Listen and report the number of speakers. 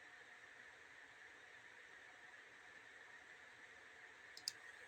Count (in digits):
0